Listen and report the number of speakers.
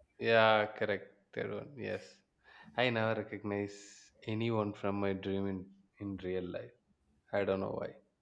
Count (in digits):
1